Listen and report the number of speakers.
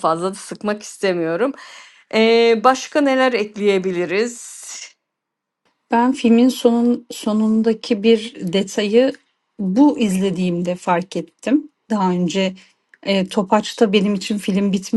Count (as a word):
two